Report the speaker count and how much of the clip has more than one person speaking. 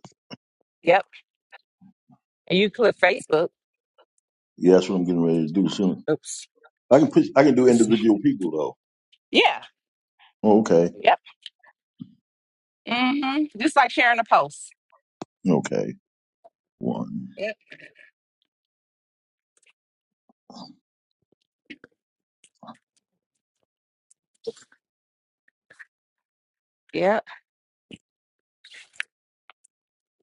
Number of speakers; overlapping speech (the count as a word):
two, about 1%